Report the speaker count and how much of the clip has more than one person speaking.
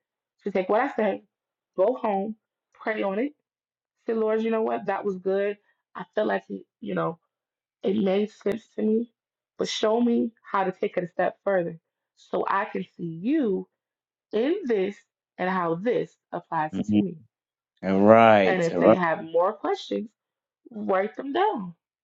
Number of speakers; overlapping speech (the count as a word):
two, about 4%